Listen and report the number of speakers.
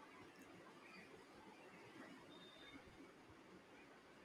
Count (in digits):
0